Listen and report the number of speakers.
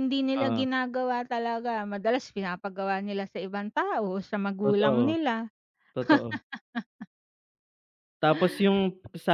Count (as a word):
two